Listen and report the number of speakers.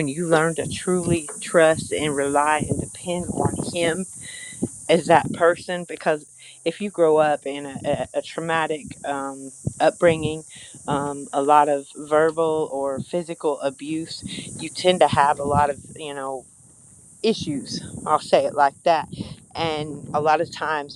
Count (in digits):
1